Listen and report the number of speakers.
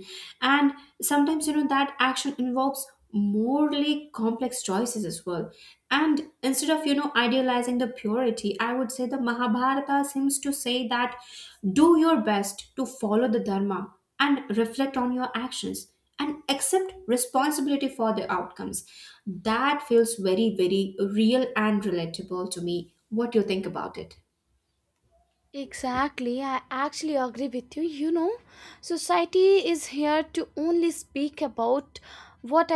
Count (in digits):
2